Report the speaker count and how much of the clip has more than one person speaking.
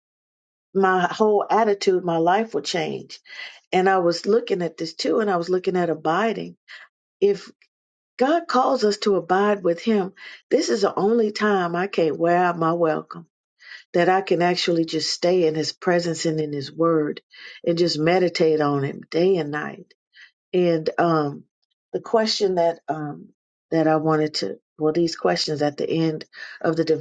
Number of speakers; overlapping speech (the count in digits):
1, no overlap